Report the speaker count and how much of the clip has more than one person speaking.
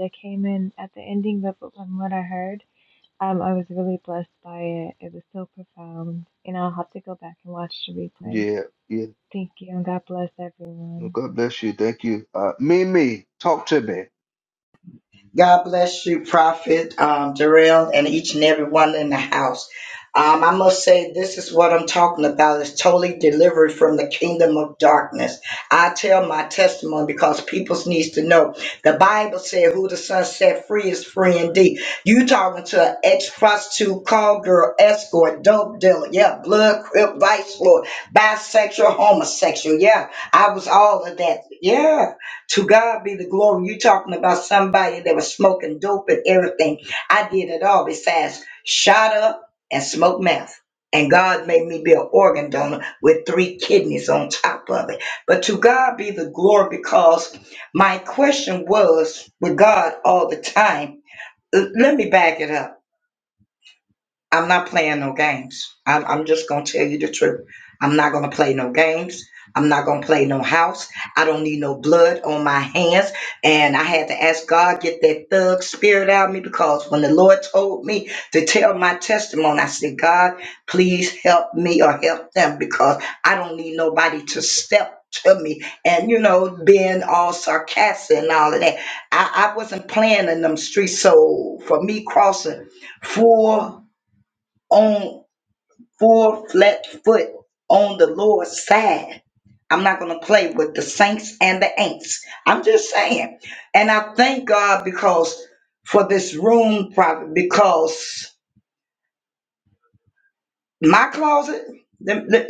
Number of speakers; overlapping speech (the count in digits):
3, under 1%